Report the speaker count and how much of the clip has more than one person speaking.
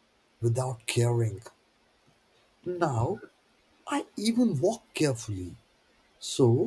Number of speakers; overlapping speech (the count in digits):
1, no overlap